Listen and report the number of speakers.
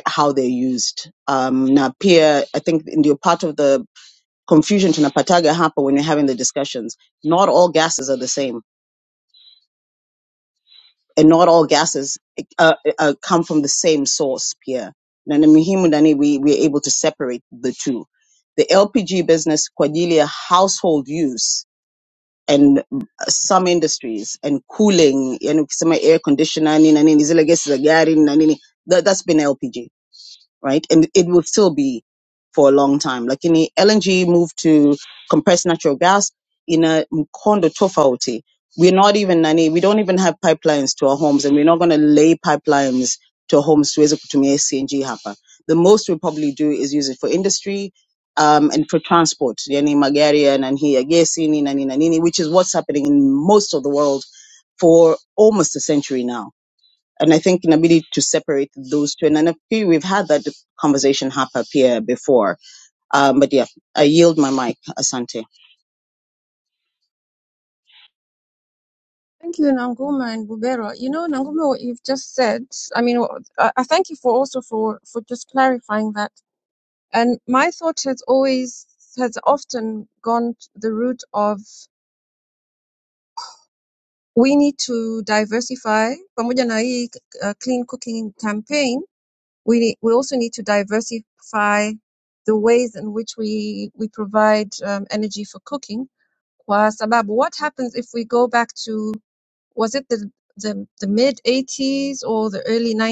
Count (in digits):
2